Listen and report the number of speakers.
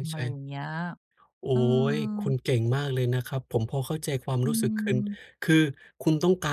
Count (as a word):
two